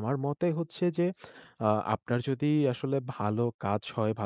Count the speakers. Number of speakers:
one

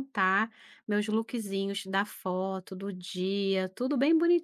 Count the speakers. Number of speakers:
one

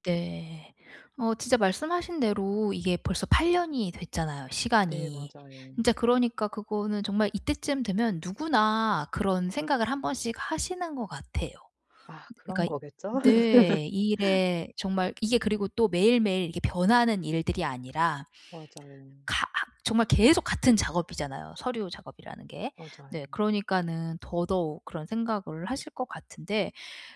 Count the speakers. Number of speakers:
two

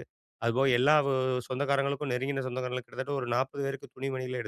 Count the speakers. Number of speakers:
one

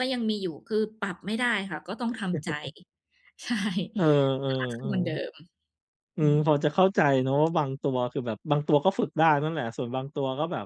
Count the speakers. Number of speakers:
two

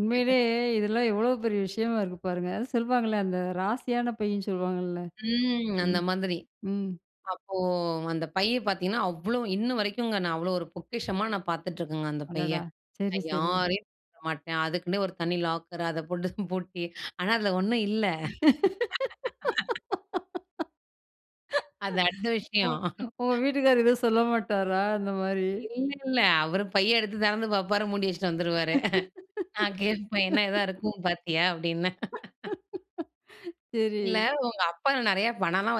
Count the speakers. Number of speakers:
two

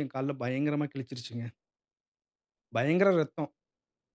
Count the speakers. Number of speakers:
one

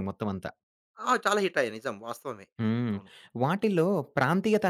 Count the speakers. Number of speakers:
two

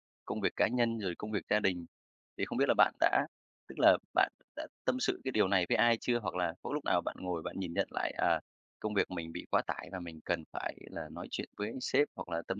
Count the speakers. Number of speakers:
one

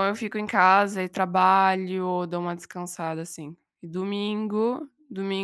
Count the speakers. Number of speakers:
one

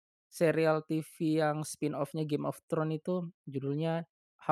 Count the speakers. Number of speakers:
one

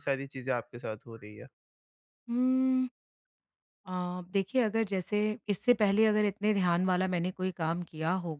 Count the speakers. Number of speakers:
two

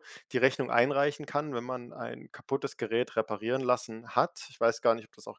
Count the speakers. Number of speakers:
one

